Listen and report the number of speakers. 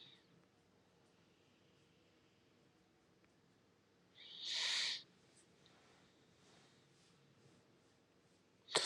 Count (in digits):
0